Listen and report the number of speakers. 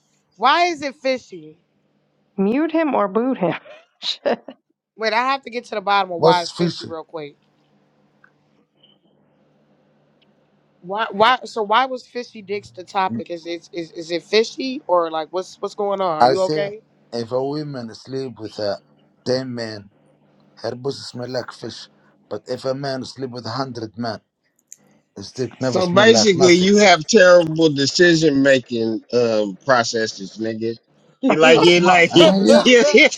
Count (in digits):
4